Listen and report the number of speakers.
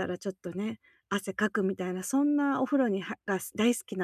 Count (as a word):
one